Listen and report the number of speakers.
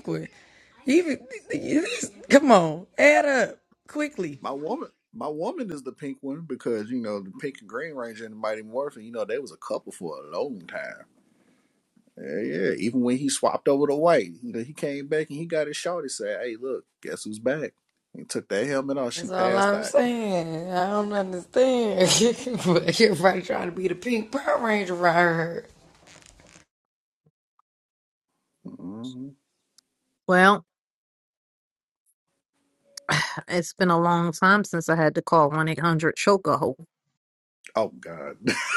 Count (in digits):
3